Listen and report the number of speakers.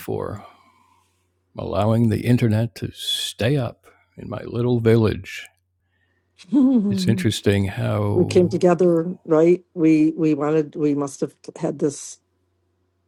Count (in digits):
2